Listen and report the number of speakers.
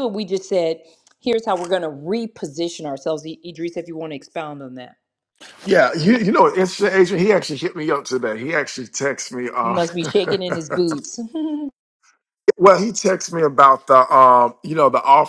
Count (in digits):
2